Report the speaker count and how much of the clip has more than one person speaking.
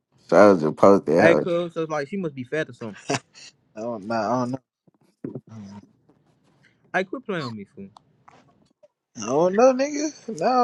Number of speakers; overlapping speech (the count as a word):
three, about 2%